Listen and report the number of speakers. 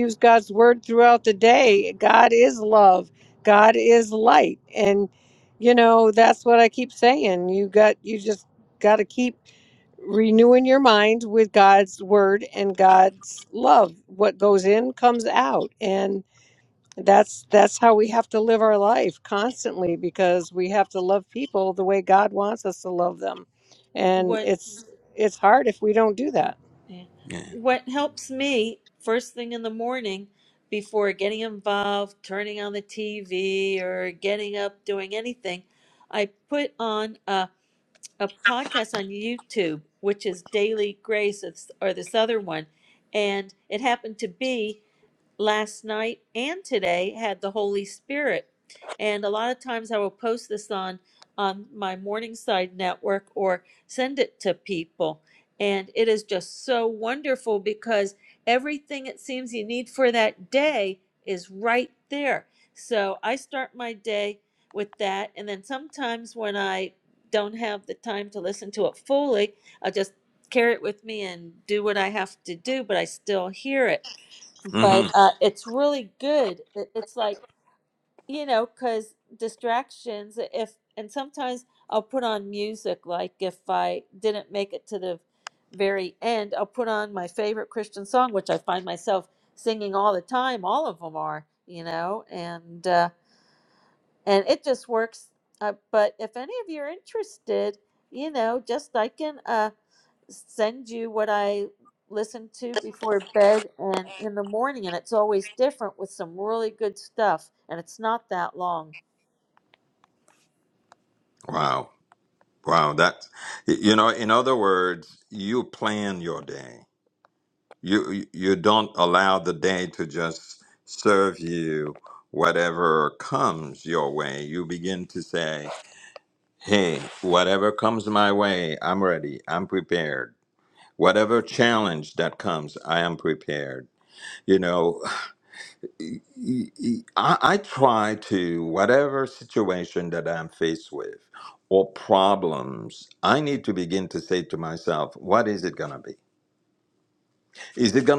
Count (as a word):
three